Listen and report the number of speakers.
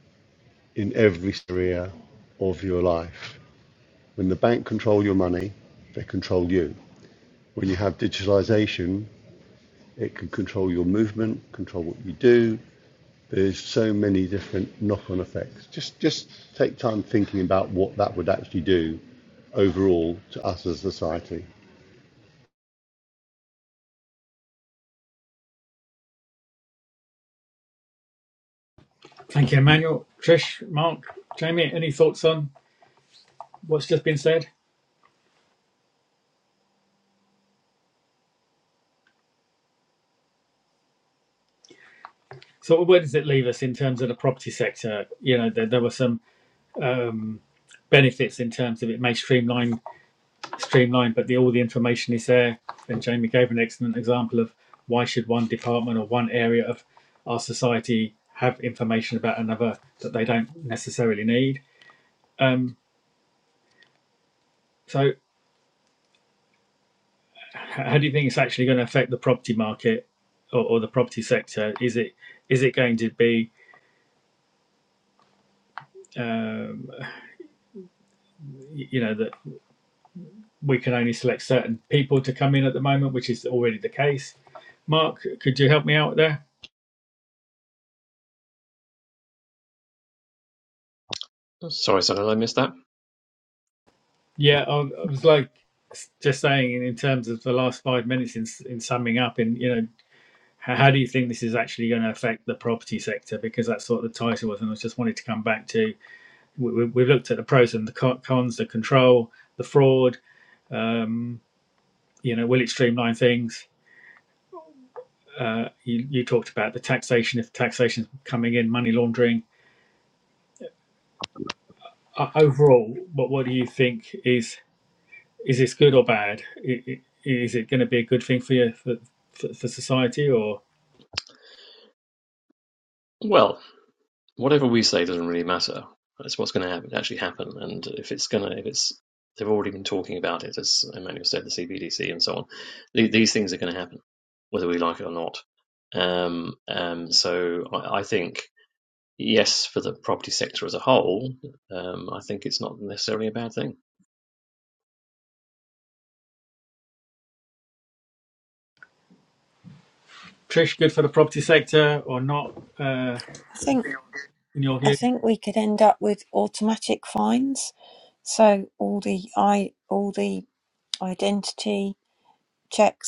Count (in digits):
4